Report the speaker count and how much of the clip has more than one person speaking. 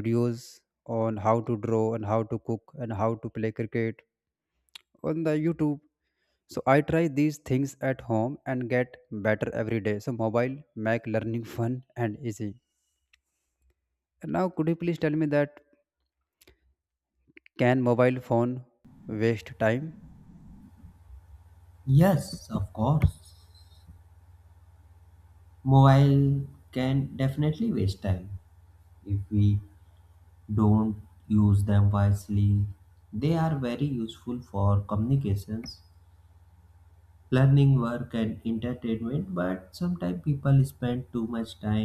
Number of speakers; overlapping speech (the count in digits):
2, no overlap